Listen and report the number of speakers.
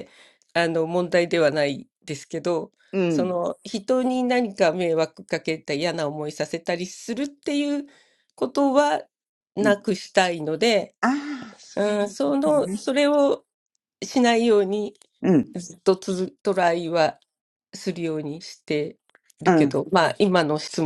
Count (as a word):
two